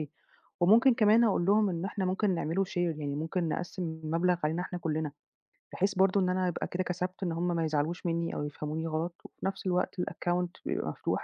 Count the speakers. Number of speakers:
one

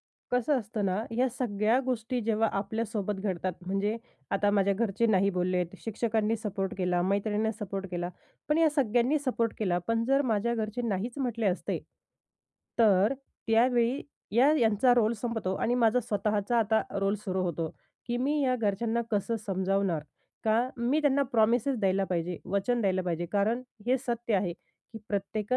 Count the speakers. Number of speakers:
one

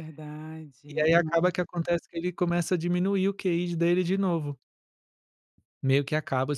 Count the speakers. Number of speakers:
two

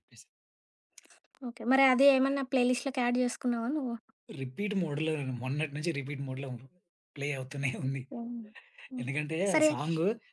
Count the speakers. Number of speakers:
two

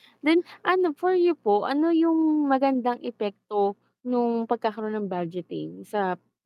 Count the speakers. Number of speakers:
one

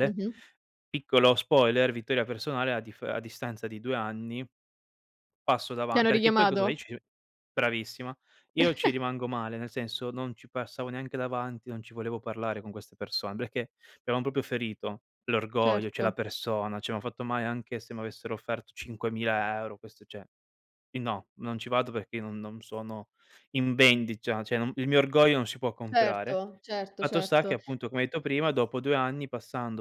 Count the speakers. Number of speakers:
two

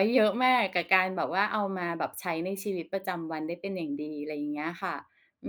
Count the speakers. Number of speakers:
one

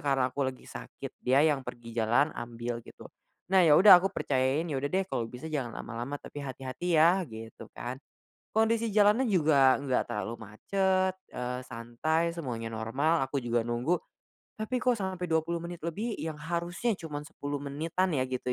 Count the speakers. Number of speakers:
one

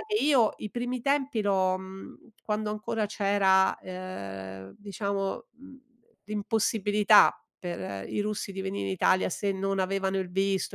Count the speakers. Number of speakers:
one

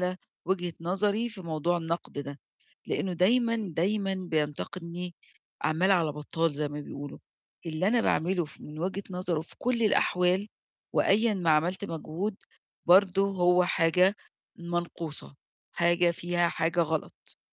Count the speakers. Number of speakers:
one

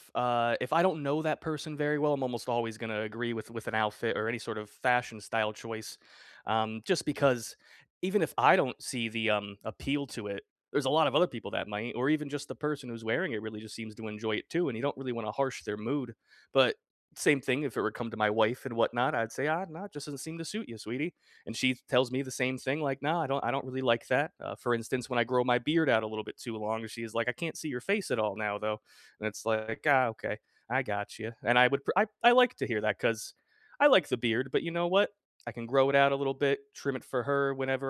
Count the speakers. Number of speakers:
one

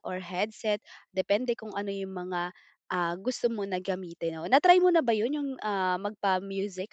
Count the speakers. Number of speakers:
one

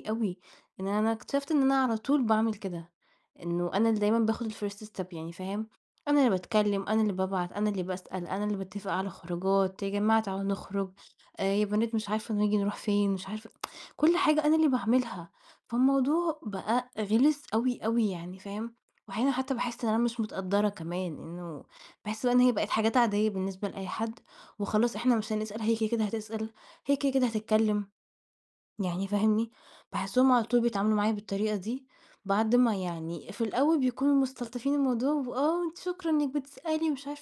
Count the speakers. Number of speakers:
one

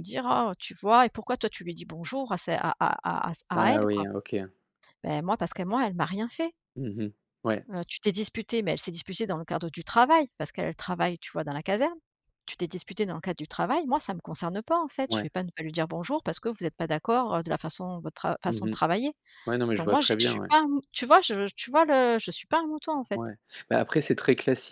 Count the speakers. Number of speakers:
two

